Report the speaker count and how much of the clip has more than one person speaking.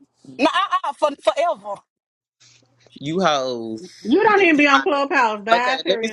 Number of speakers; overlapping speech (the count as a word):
three, about 19%